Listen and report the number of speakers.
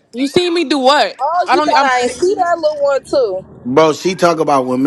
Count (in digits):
3